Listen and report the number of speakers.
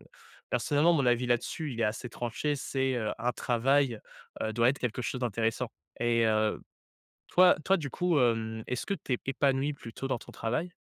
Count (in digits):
1